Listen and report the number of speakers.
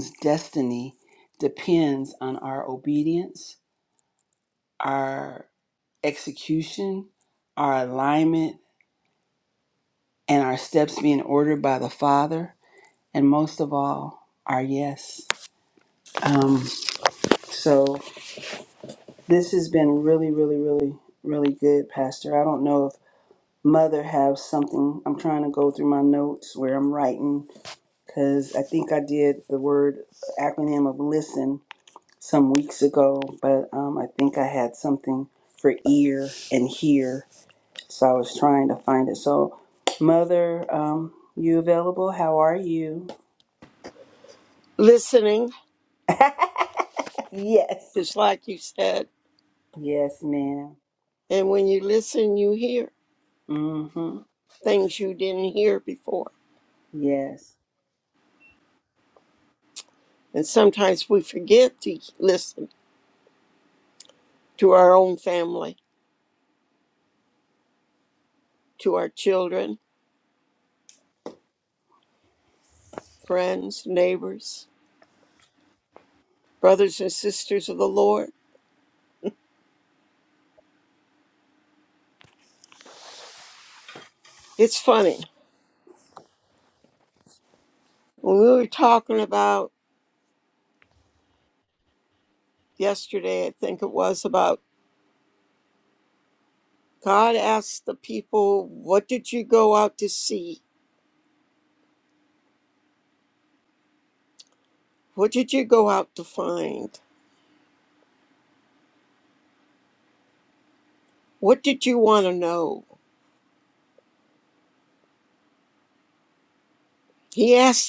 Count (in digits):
2